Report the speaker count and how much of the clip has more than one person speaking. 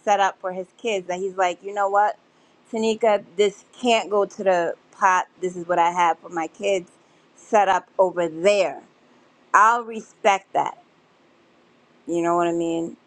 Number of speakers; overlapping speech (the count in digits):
1, no overlap